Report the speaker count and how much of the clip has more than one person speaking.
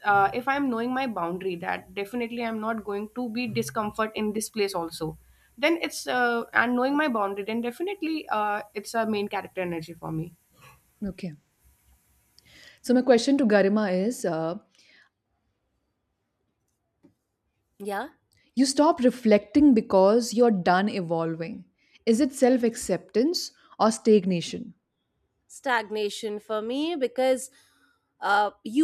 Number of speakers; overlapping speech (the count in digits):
3, no overlap